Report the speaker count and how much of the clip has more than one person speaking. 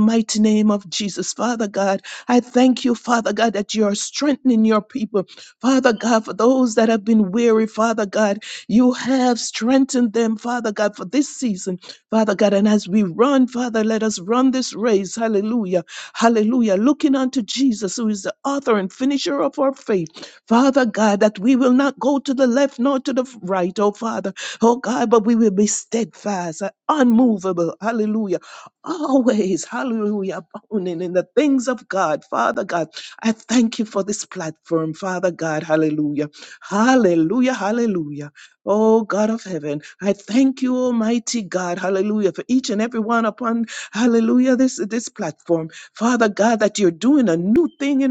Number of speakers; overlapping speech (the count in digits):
1, no overlap